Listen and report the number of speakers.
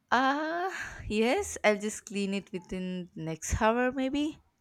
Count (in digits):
1